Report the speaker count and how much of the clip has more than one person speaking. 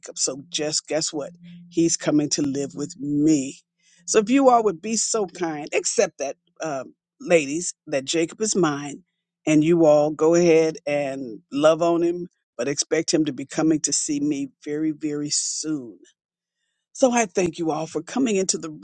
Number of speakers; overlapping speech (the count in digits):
1, no overlap